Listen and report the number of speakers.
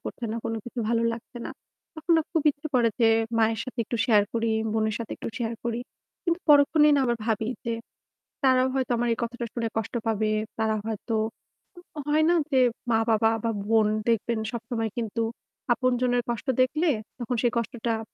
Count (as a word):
one